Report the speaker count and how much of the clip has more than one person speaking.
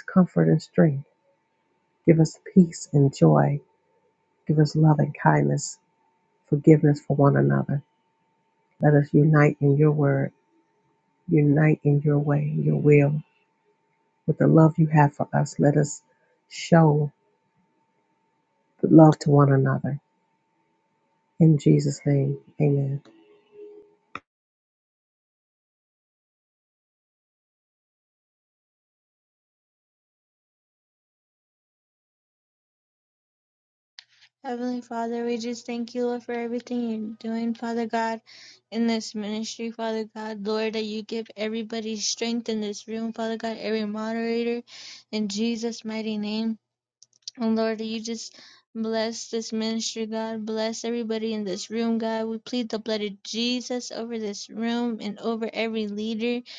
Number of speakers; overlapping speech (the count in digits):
2, no overlap